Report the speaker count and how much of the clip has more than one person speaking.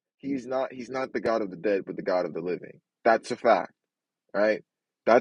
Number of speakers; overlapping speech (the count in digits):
1, no overlap